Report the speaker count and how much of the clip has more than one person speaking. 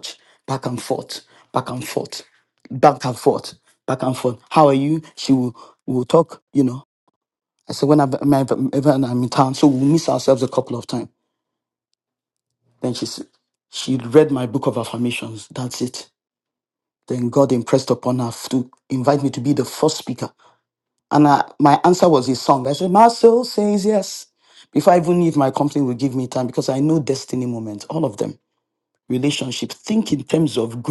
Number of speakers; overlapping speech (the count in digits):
1, no overlap